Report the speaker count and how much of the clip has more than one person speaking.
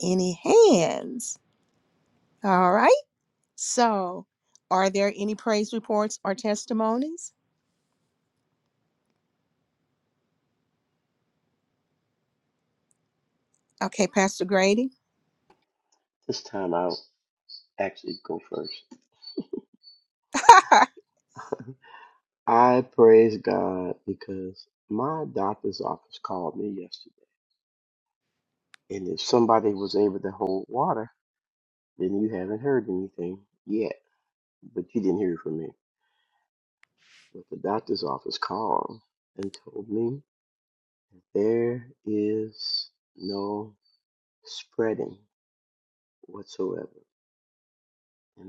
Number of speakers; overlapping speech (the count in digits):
2, no overlap